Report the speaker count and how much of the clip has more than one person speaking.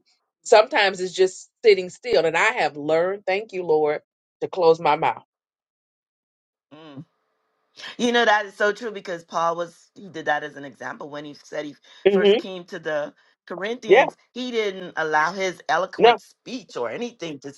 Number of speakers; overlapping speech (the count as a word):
two, about 4%